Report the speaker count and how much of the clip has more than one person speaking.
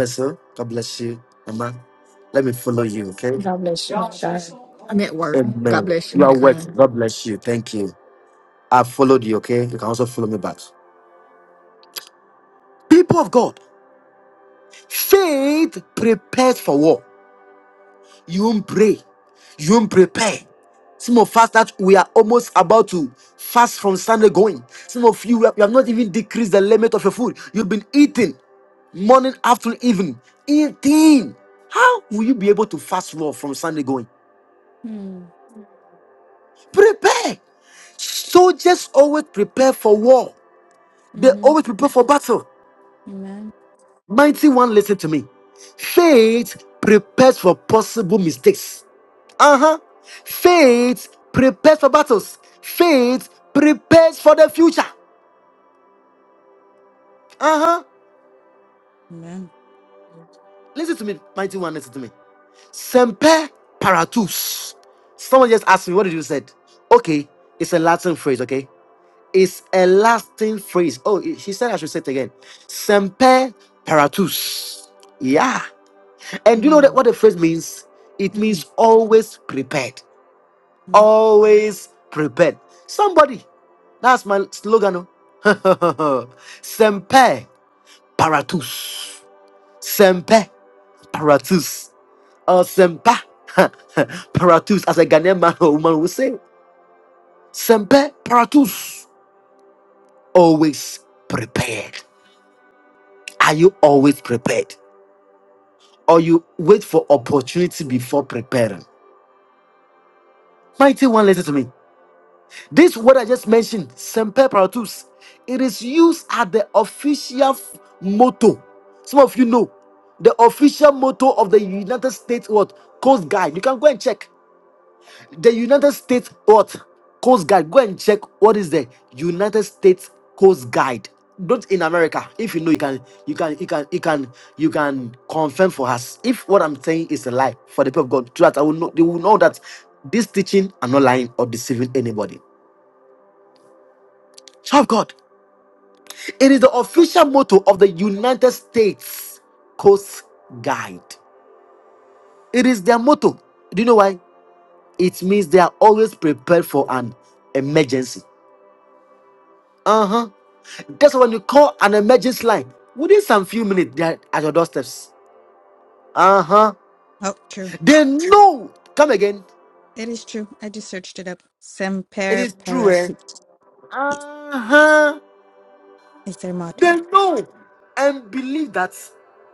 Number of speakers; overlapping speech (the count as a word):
three, about 2%